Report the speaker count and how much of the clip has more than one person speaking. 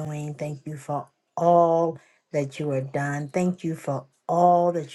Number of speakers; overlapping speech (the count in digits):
1, no overlap